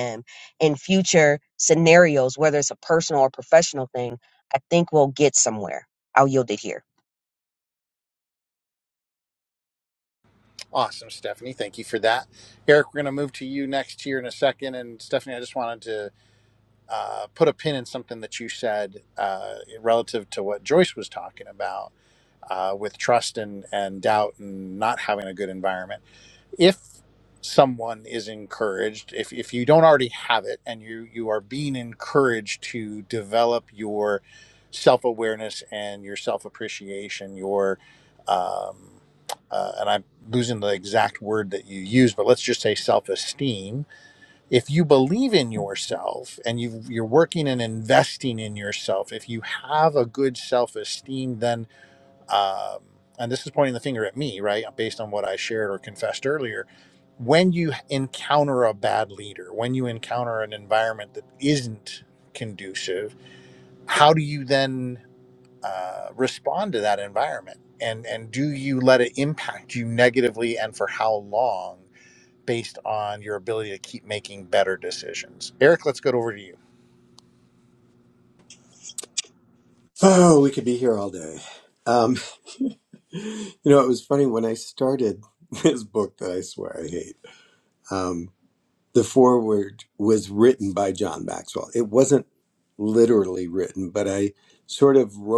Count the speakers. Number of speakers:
3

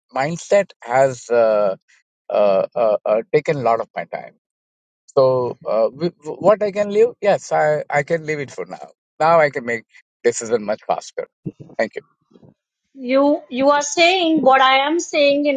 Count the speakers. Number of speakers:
2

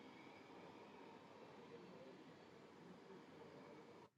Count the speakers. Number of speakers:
0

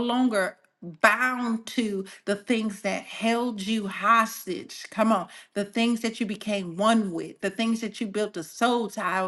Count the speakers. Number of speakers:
1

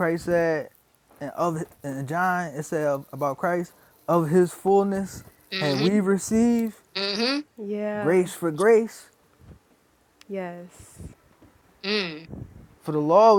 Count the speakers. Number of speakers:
3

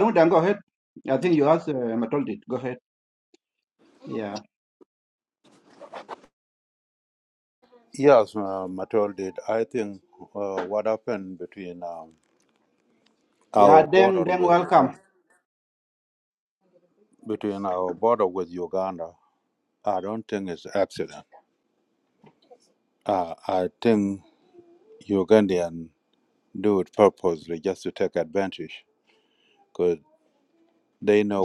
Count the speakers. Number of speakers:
2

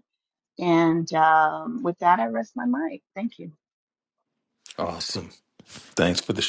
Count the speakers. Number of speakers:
2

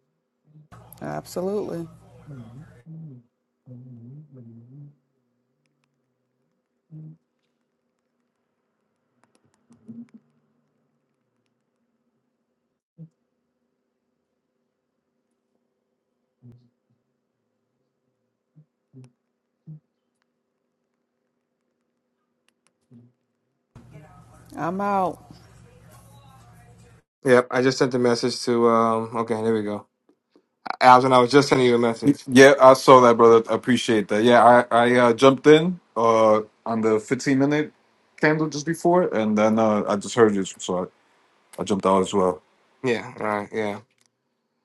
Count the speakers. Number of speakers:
3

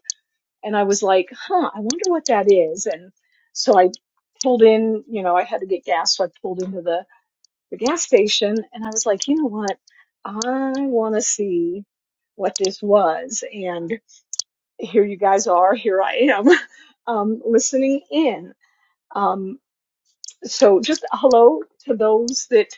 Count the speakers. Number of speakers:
1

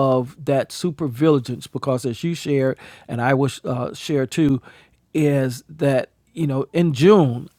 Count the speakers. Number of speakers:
1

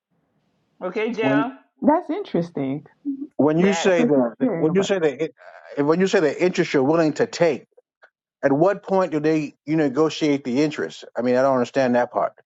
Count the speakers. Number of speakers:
3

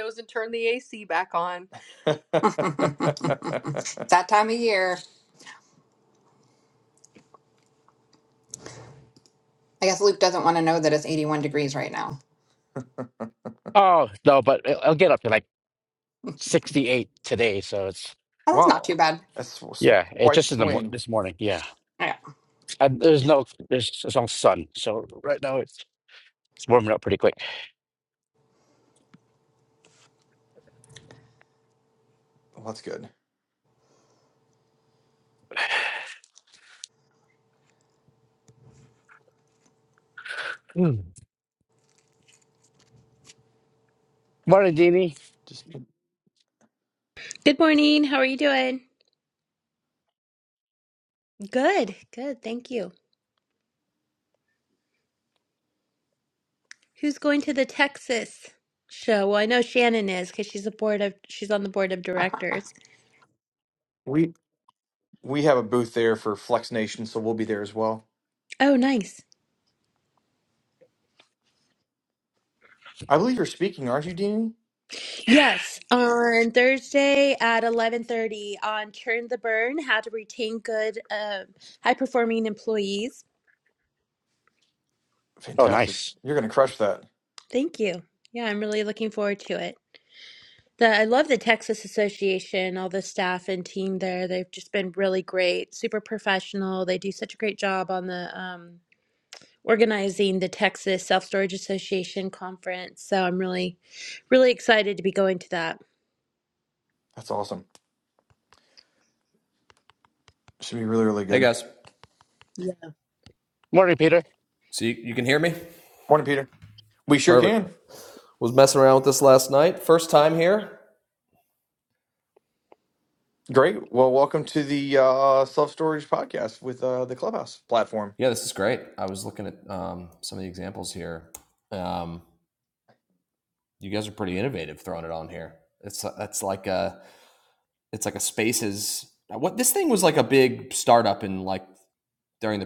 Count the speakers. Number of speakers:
6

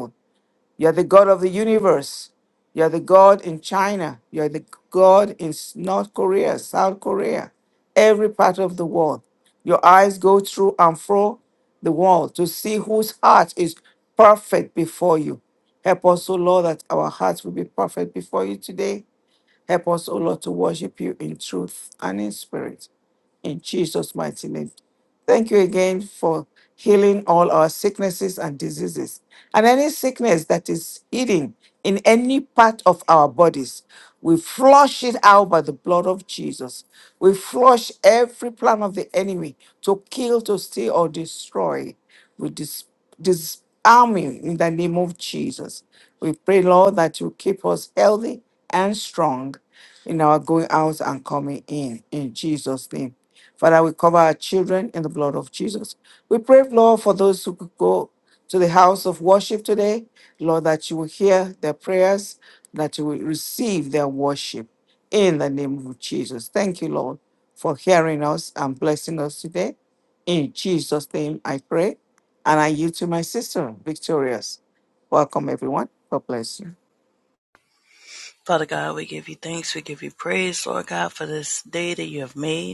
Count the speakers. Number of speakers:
2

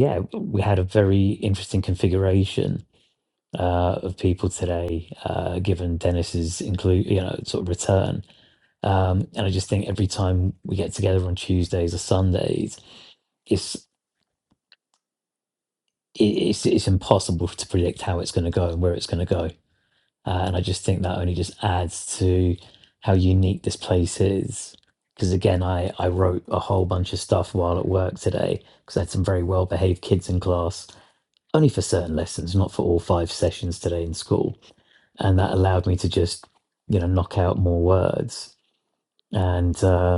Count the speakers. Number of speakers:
1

